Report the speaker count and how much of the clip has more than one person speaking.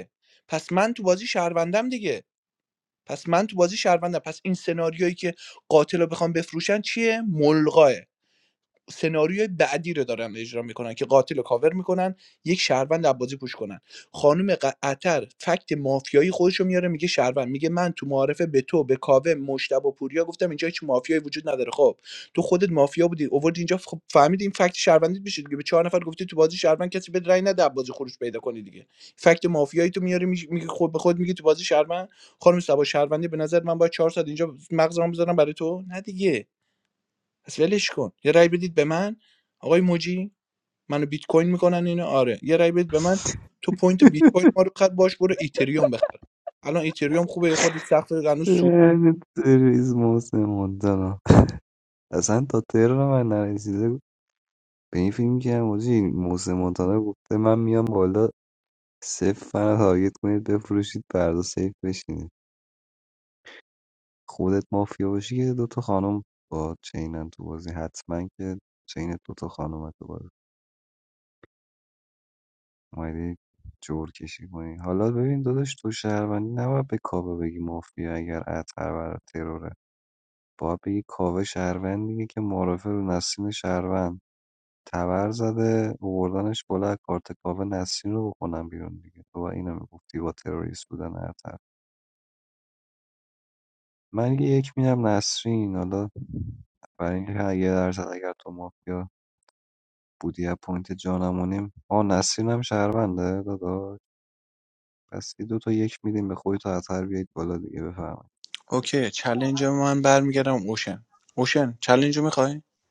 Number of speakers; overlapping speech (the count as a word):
two, no overlap